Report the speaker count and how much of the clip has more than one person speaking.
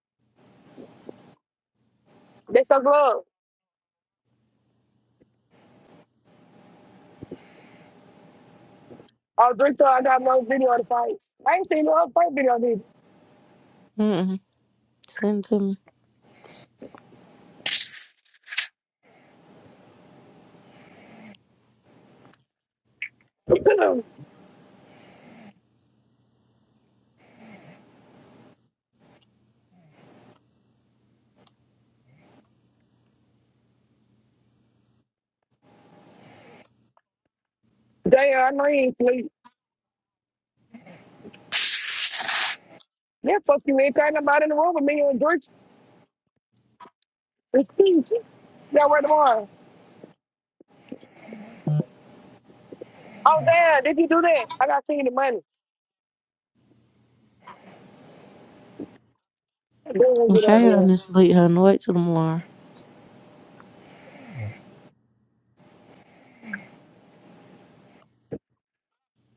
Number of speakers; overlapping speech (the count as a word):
two, about 1%